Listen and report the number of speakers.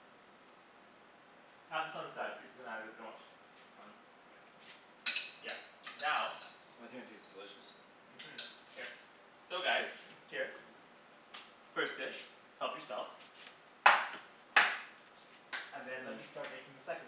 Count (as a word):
two